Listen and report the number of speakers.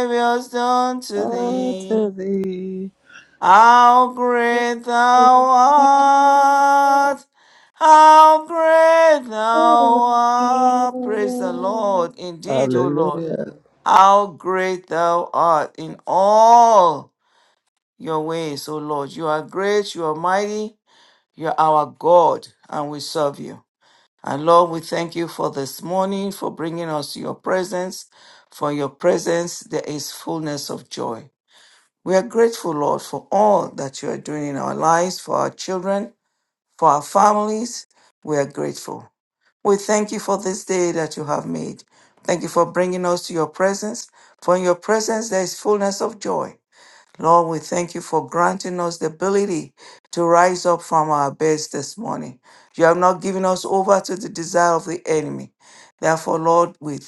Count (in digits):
2